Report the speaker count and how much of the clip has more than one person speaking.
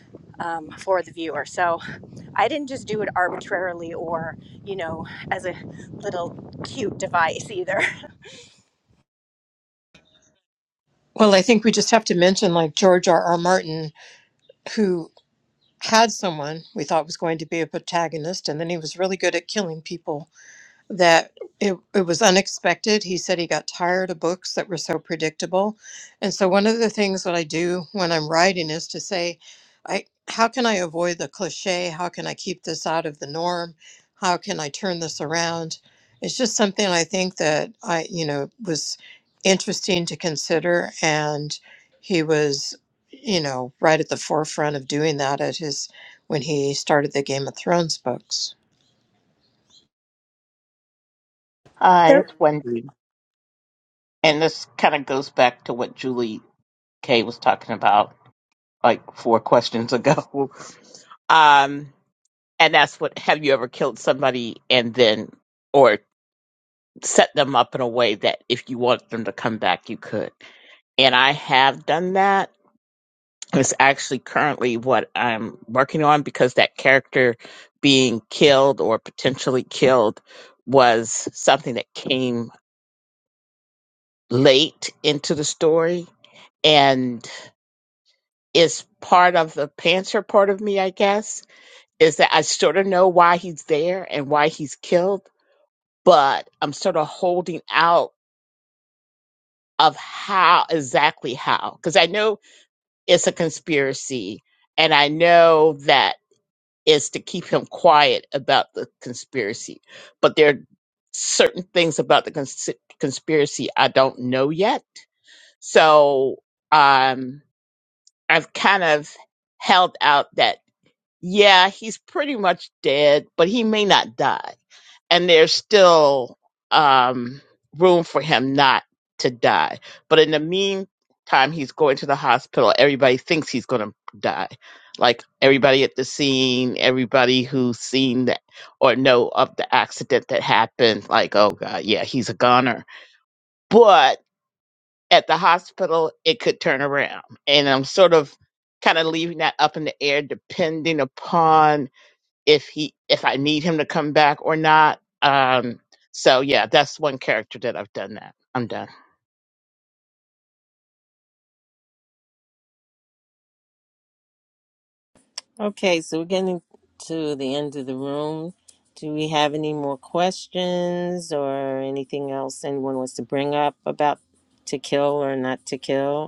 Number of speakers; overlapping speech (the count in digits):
4, no overlap